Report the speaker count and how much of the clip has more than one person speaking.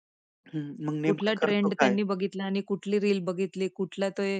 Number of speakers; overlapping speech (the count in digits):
2, about 21%